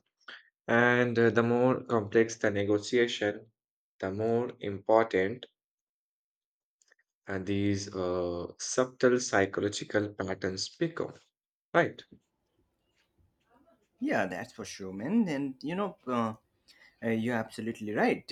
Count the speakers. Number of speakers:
two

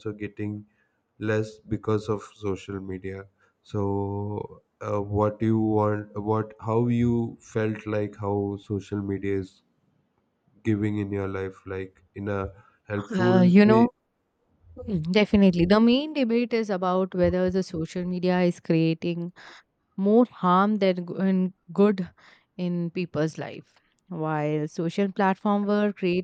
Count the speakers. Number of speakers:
two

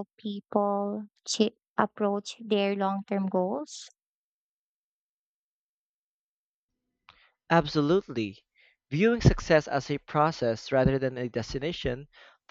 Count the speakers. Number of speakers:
two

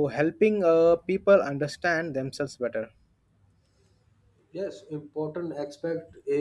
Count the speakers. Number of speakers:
two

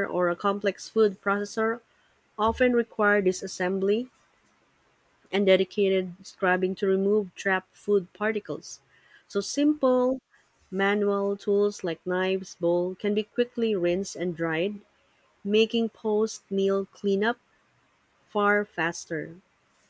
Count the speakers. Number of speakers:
one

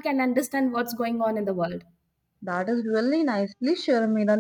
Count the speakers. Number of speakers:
two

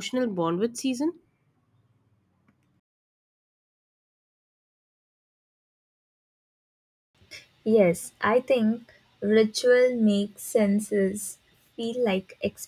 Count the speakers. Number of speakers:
two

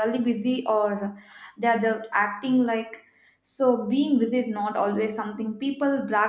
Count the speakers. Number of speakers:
one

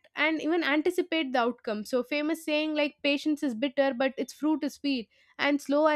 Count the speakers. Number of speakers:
one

